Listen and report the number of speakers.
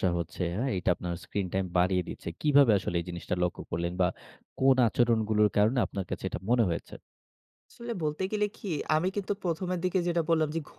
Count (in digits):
2